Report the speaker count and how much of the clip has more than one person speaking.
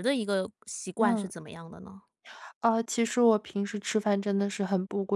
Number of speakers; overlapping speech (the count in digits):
2, about 7%